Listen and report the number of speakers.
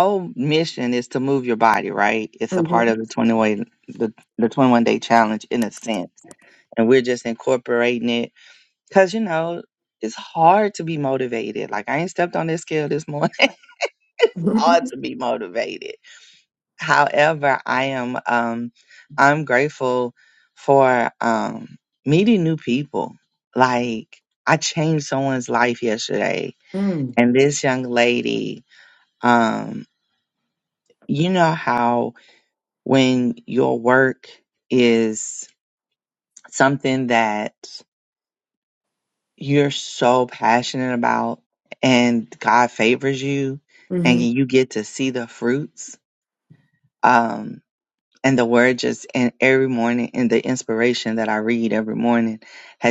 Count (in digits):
2